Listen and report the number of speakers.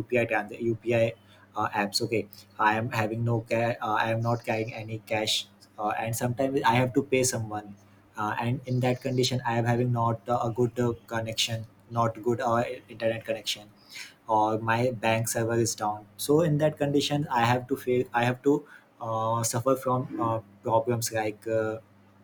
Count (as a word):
one